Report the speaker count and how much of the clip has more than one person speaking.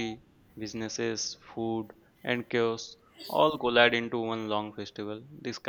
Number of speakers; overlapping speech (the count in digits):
1, no overlap